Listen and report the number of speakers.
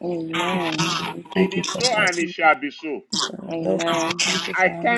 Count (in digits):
3